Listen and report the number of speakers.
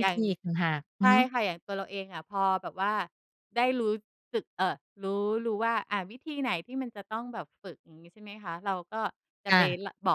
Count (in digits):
2